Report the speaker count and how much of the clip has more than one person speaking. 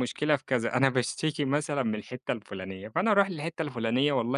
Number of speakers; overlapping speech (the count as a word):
one, no overlap